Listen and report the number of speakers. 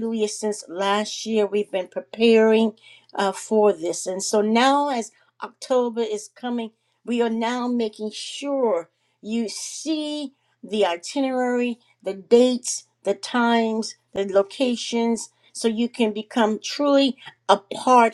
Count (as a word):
one